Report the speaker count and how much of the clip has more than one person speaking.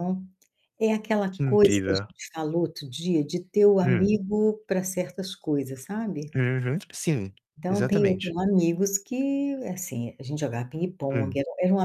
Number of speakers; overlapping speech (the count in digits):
2, about 15%